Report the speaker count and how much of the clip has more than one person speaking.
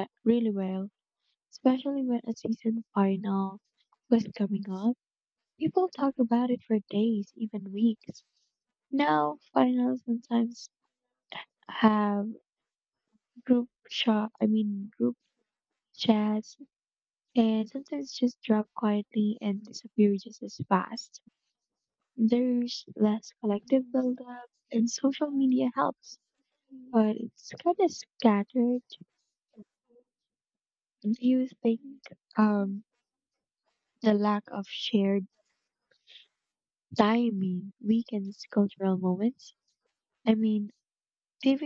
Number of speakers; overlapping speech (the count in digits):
1, no overlap